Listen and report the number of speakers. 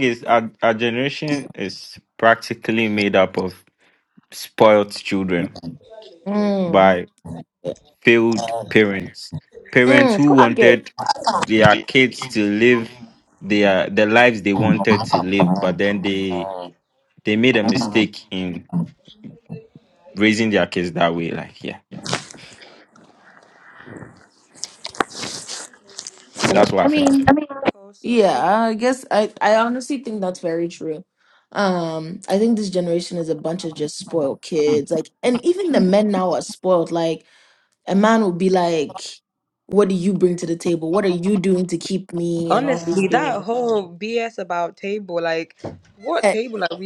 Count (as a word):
three